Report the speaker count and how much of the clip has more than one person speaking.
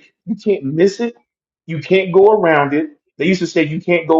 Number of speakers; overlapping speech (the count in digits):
1, no overlap